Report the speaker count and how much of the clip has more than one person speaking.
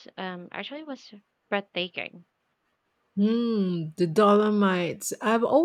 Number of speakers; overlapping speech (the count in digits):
2, no overlap